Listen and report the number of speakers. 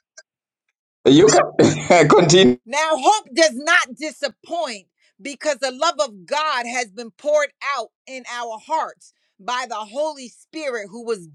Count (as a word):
two